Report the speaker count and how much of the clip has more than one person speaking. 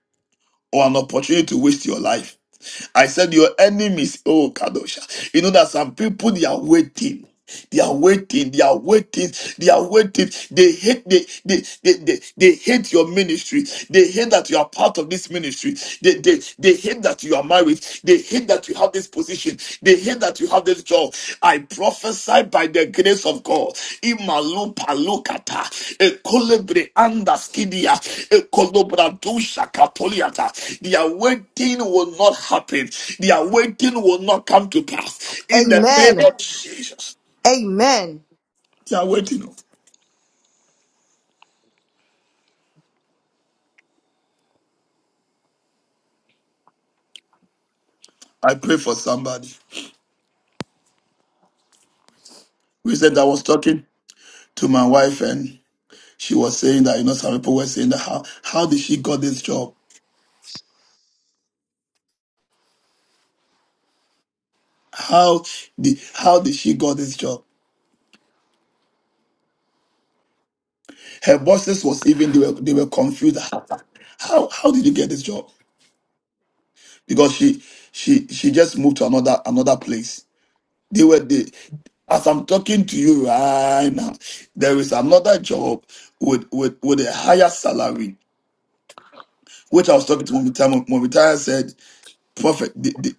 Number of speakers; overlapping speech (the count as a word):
two, about 1%